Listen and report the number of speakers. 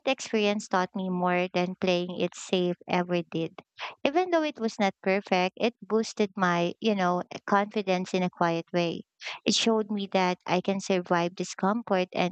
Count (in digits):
1